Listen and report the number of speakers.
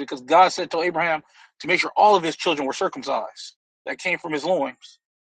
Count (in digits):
1